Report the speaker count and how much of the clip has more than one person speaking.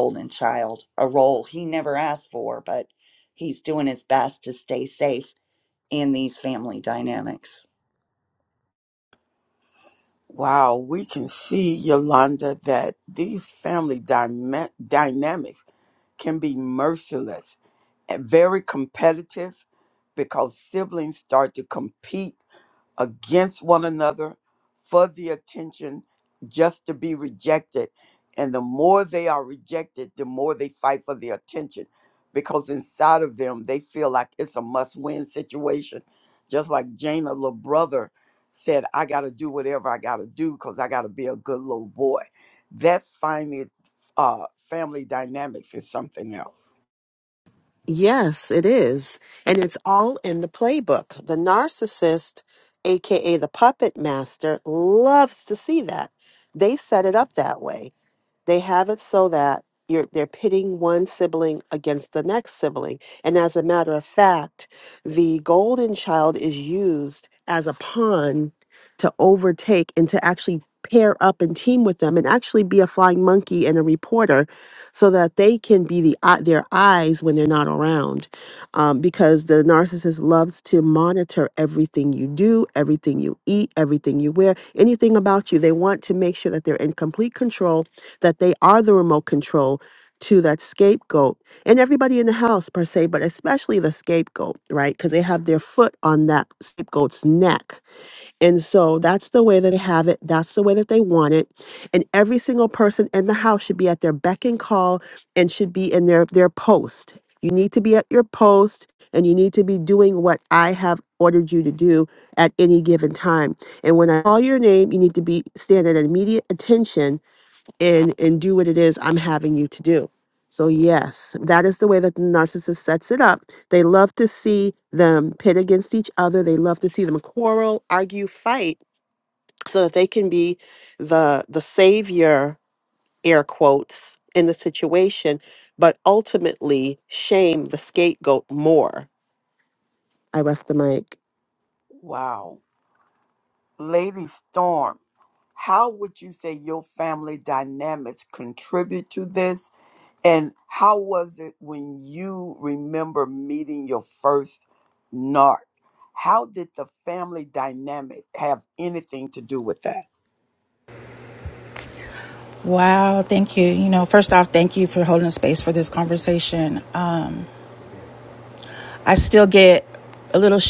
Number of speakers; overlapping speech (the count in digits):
4, no overlap